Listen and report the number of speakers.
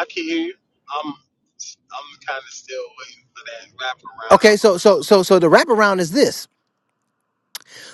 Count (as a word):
two